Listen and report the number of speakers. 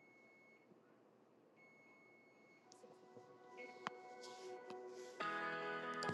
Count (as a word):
zero